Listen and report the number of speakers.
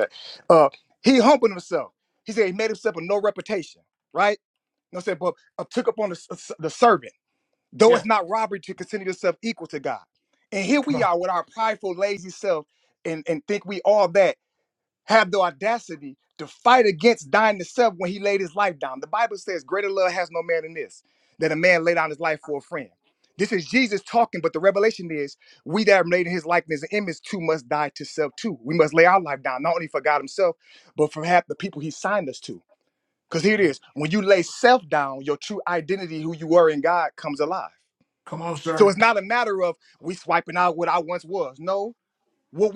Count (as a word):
two